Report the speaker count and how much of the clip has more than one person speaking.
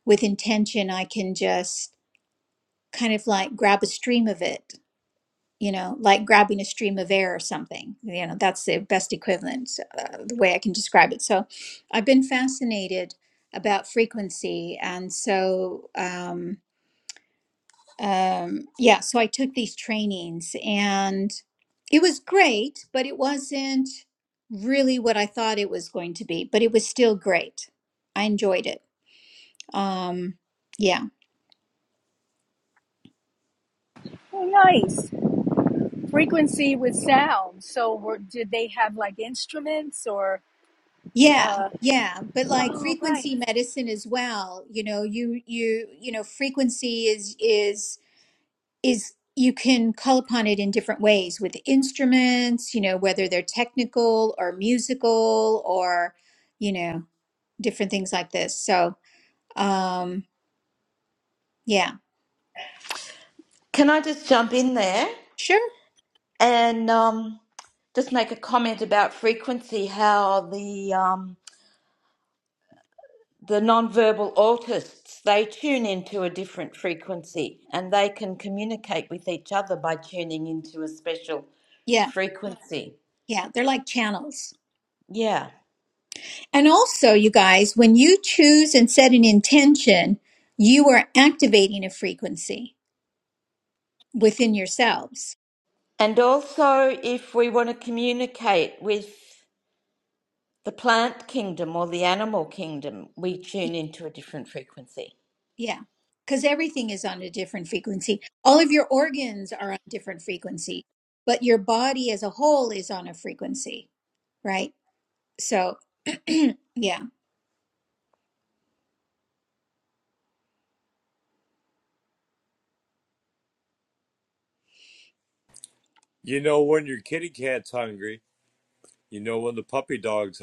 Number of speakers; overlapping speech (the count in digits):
4, about 1%